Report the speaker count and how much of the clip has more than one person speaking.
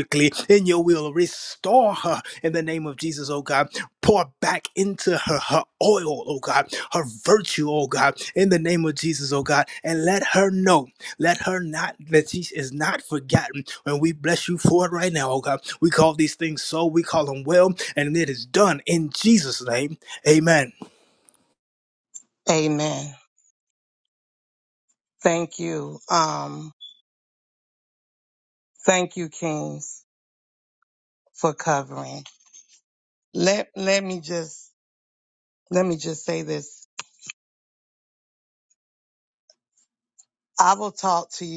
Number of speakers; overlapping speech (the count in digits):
2, no overlap